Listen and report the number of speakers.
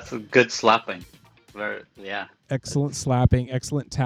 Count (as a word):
two